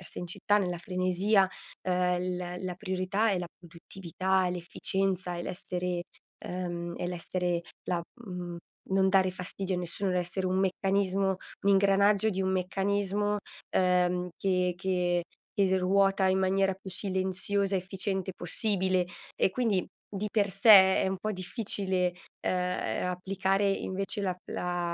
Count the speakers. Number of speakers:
1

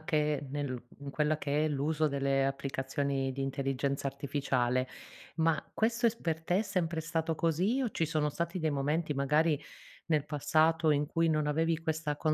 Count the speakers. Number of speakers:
1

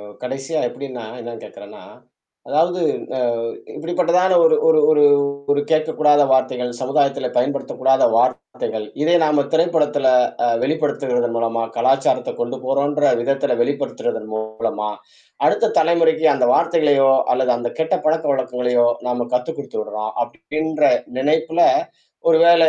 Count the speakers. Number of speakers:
1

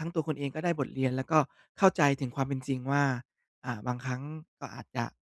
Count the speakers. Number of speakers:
1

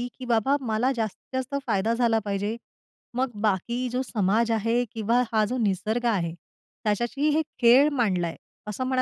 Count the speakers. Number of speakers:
1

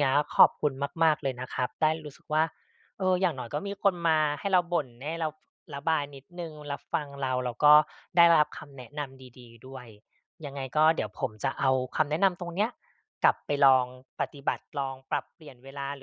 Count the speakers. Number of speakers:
1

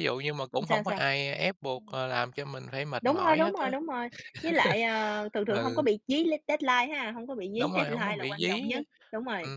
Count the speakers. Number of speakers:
2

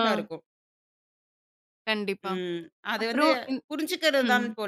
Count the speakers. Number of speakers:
2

